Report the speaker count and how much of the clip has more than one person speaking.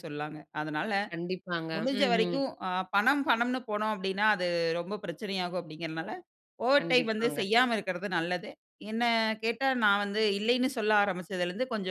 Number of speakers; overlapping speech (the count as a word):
two, about 11%